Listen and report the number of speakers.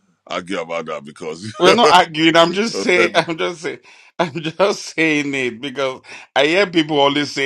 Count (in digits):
2